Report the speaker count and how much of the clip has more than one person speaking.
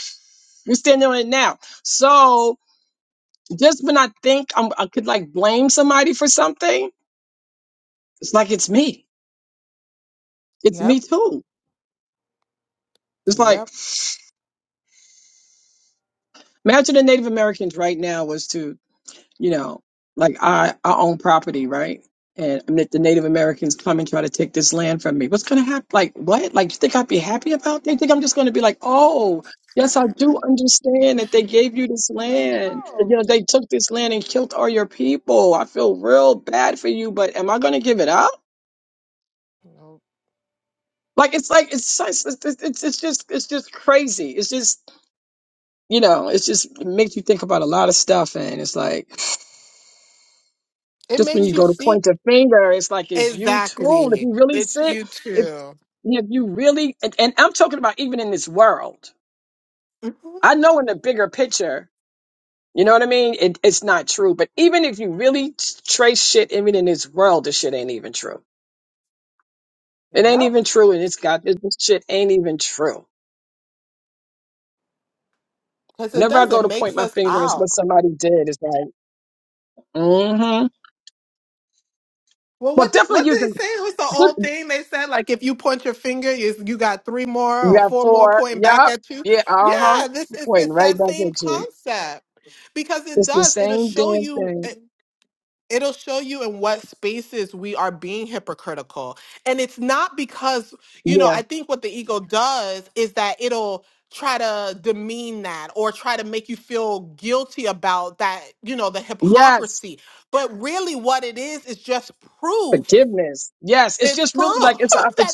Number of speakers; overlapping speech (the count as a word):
two, about 11%